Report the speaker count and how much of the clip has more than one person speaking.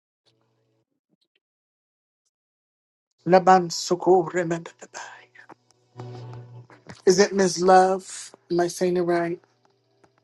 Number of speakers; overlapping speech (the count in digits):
1, no overlap